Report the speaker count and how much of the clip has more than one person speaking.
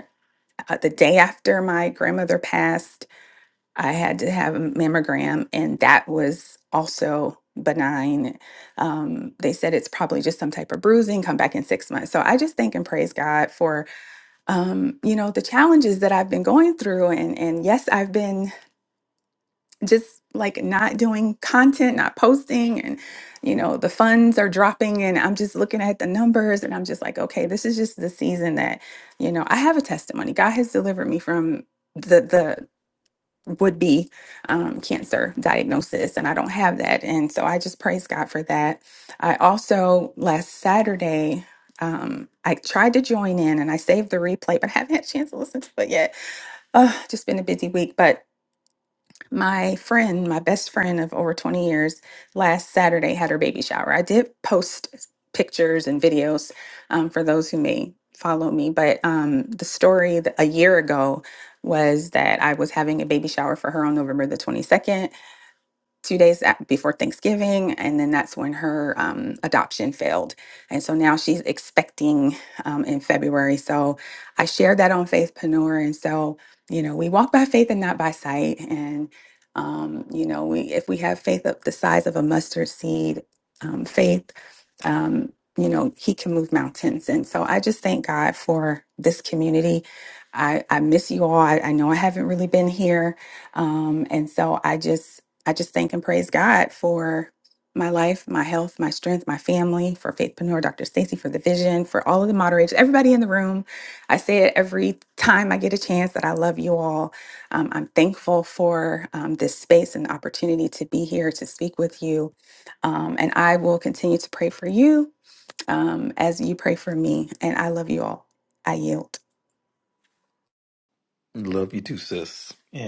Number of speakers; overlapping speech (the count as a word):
two, no overlap